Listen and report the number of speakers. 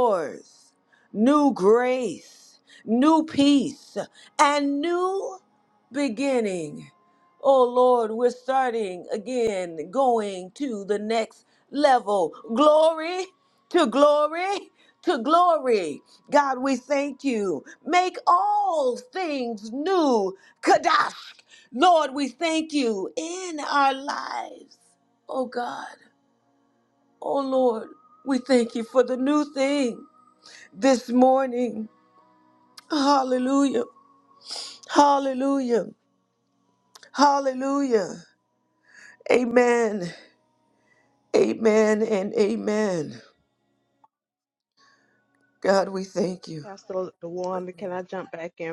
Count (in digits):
2